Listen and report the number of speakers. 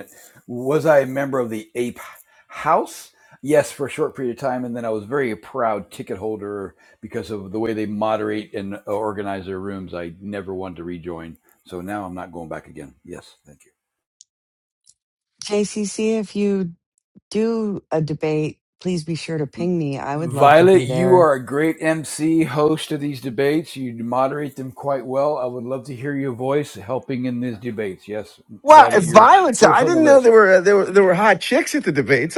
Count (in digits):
3